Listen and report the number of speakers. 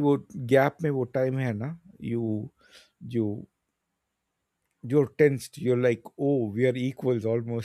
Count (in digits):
1